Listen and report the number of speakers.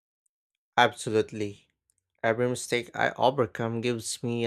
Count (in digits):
1